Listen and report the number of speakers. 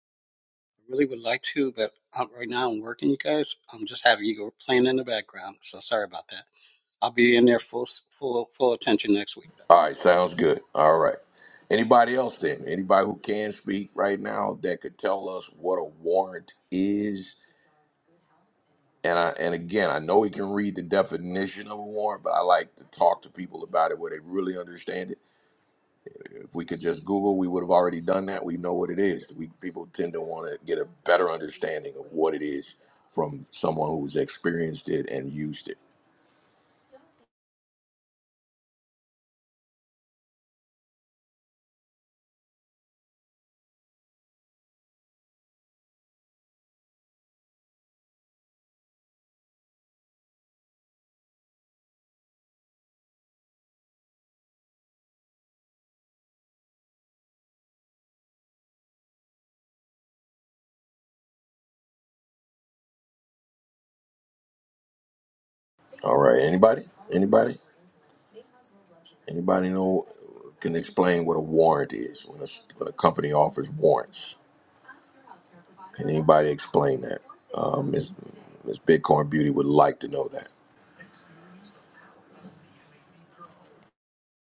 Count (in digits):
2